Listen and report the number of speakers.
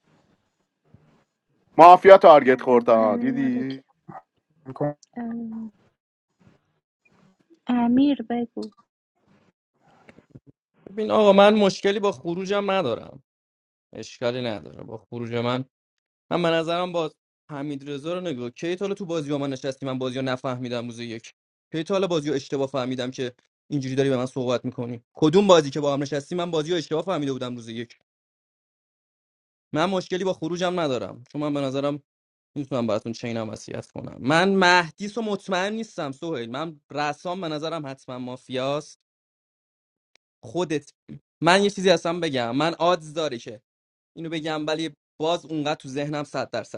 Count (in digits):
3